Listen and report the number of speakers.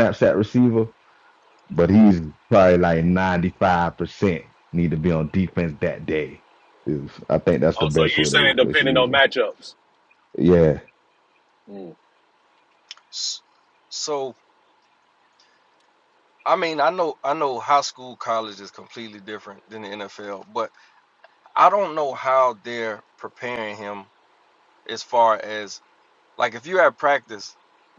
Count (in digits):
3